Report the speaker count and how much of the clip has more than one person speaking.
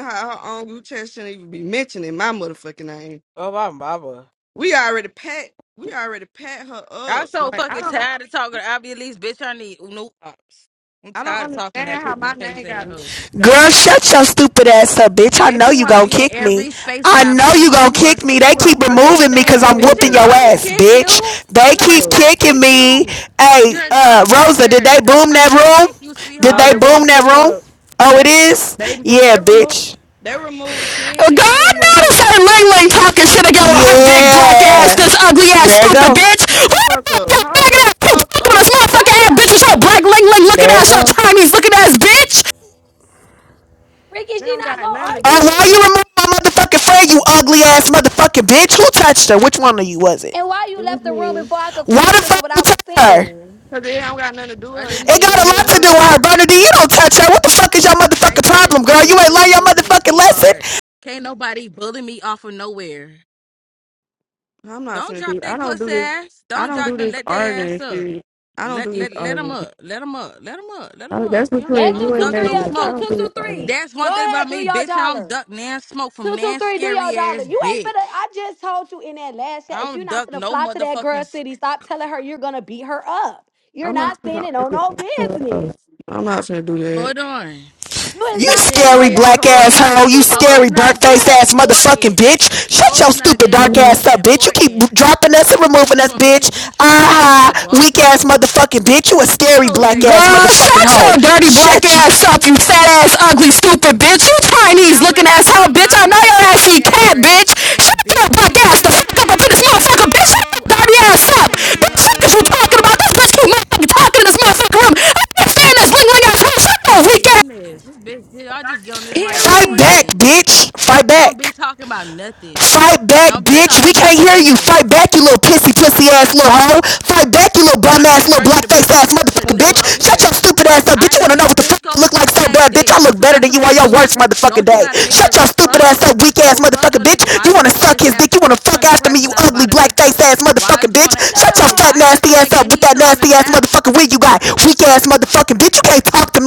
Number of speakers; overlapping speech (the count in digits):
5, about 54%